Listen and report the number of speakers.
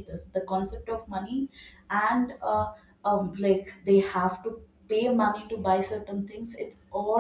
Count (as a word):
one